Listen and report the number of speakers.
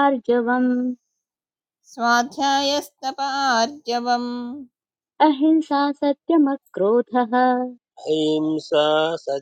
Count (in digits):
3